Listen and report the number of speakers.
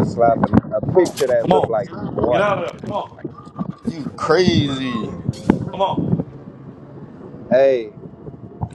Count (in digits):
3